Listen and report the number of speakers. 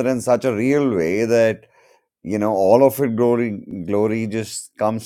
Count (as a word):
one